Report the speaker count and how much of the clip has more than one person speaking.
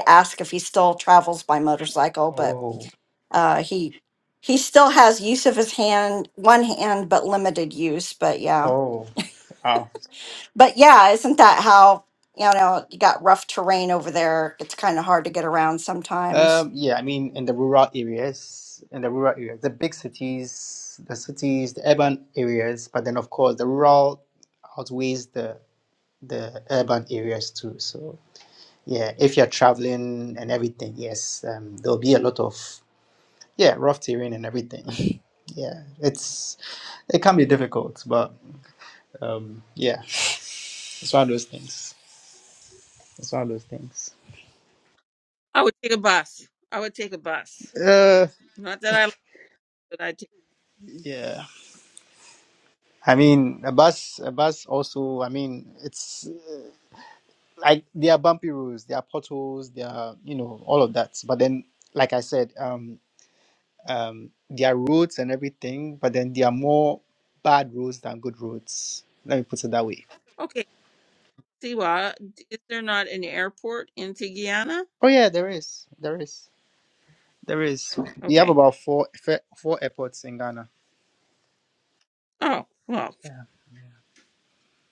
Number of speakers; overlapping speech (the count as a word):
three, about 1%